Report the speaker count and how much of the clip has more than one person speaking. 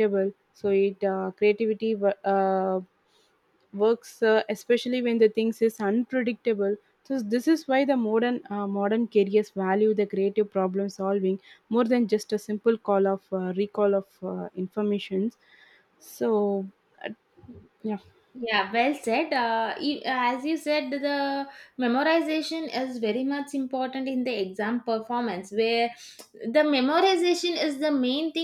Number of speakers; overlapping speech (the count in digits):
2, no overlap